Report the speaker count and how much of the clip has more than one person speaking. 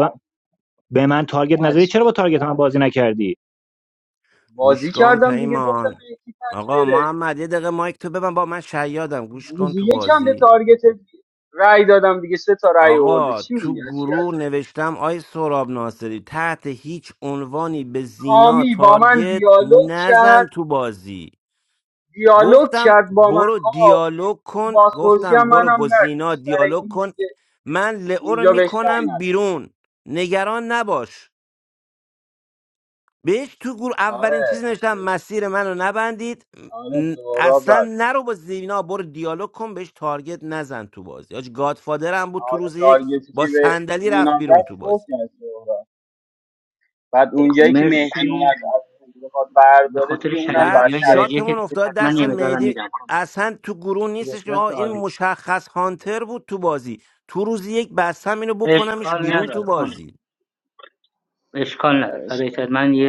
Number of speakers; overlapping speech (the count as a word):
four, about 34%